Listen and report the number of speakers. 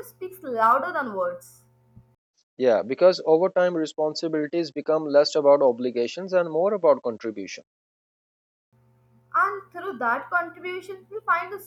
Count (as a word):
two